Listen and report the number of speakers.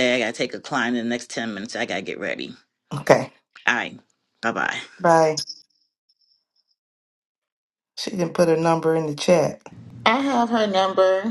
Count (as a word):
three